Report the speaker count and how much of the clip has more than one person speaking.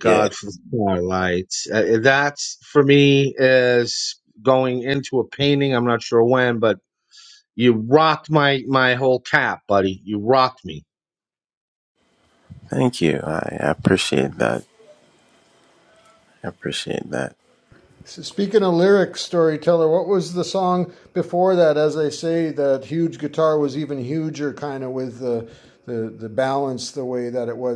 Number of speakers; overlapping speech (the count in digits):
3, about 1%